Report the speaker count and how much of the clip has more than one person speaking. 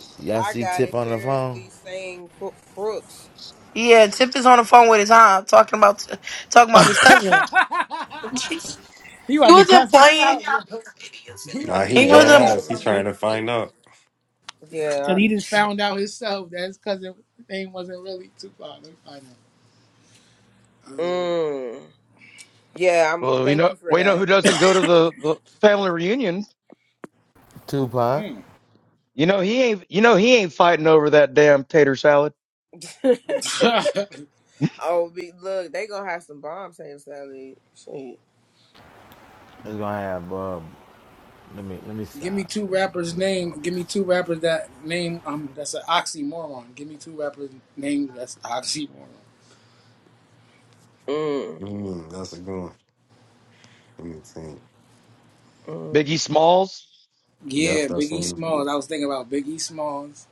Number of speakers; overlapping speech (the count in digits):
6, about 12%